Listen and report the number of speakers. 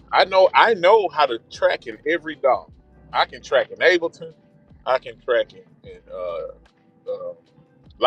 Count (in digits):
1